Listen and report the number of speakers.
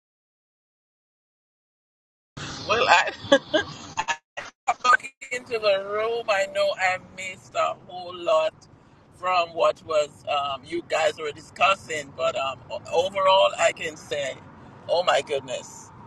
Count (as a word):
one